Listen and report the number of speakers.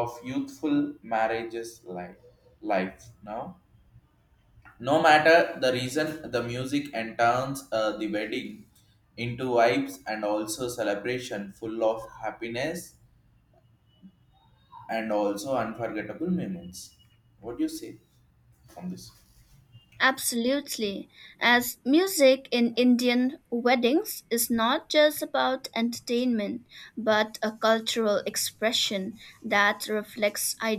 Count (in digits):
2